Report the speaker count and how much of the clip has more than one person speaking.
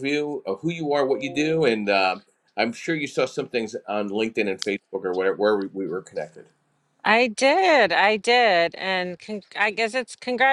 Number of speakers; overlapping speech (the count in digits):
2, no overlap